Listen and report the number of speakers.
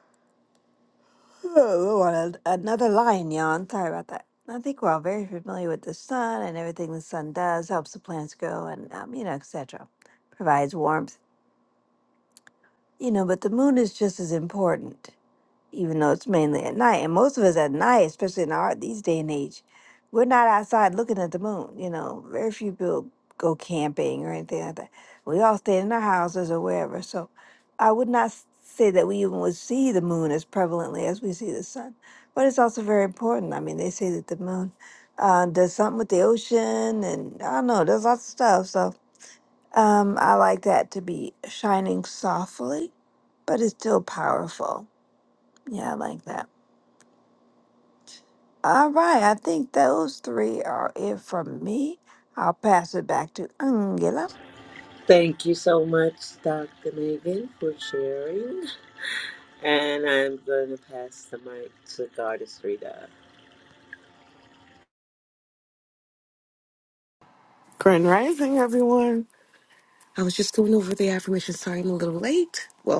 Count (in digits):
3